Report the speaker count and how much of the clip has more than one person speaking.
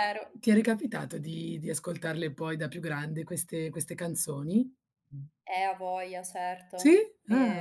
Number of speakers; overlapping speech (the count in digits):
2, about 5%